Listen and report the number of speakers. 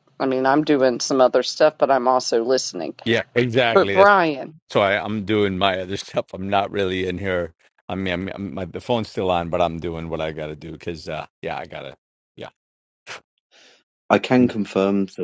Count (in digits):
3